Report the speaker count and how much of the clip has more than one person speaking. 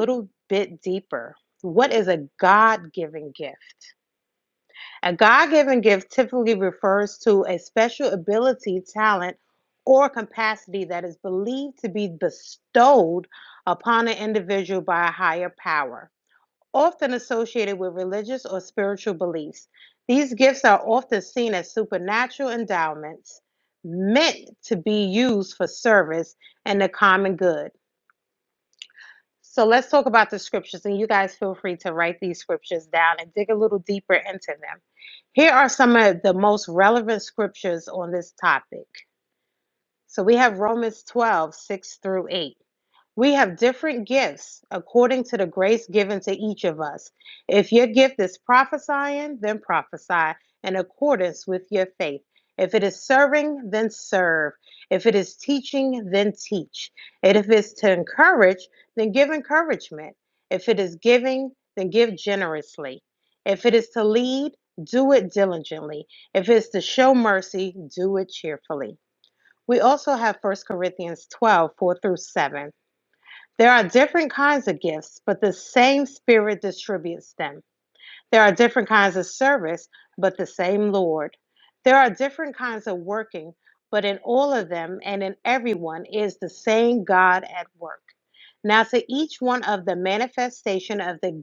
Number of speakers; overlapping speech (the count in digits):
1, no overlap